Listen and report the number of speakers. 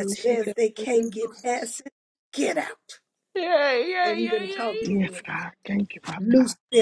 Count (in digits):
3